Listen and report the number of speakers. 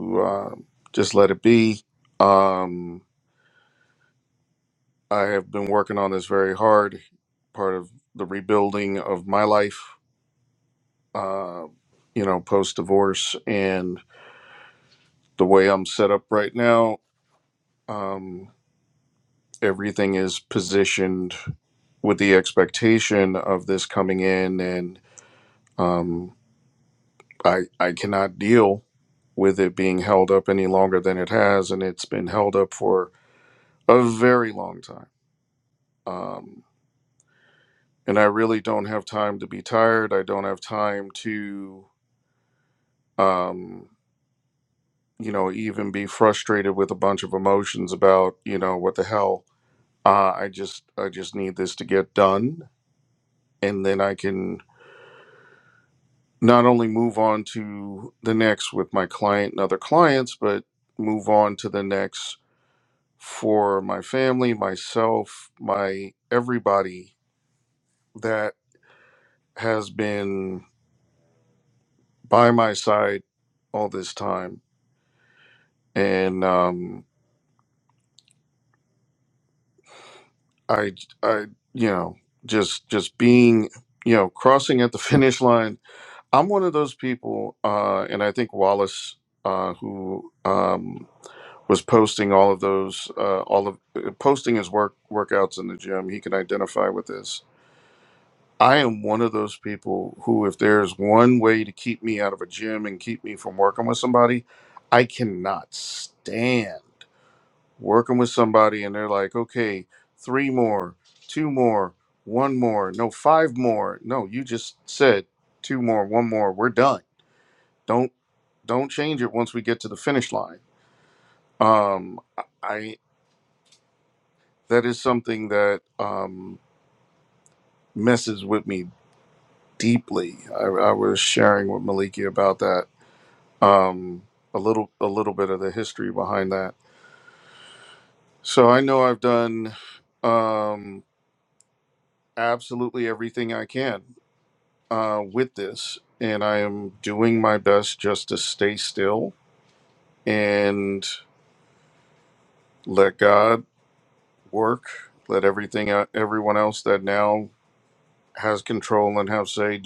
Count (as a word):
one